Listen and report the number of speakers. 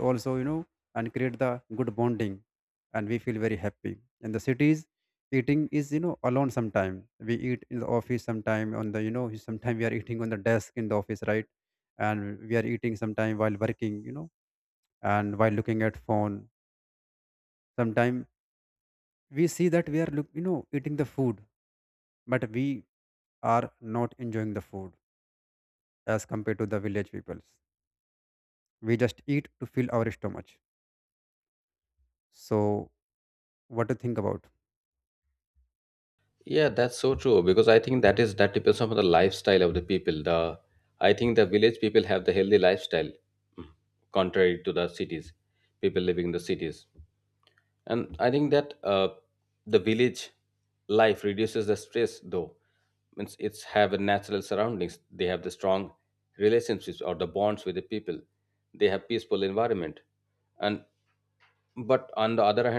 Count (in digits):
2